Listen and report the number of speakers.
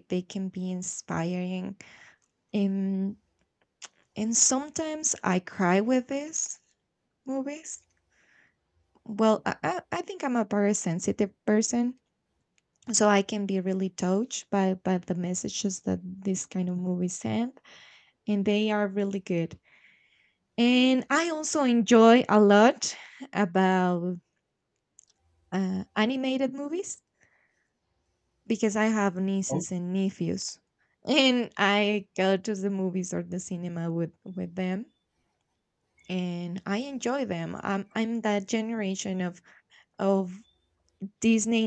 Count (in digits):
1